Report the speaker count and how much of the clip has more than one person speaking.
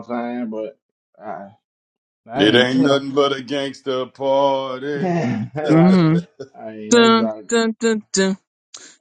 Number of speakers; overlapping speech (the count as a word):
three, about 19%